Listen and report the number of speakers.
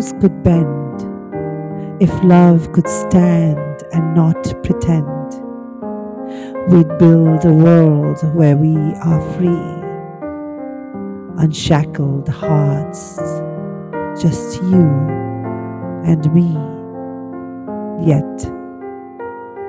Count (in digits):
1